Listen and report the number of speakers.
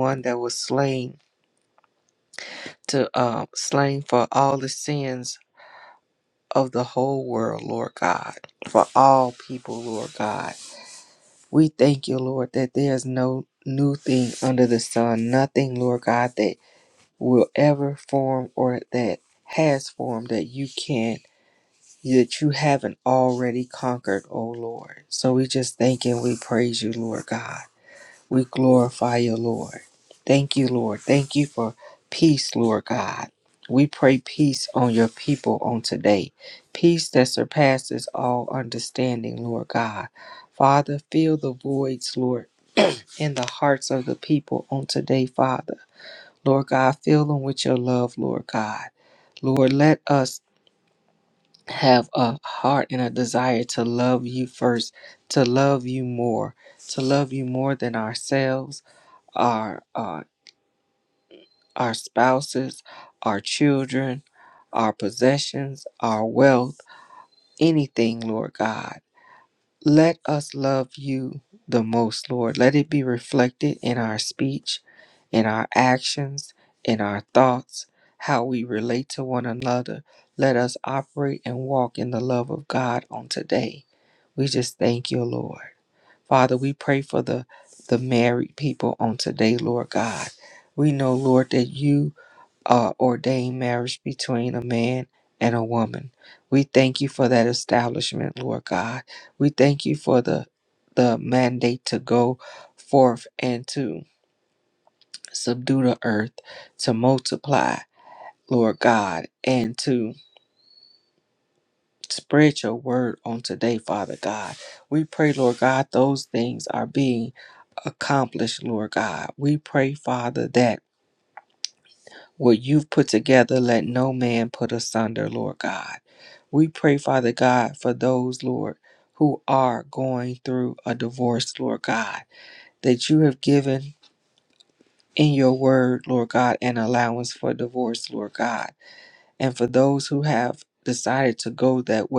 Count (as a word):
one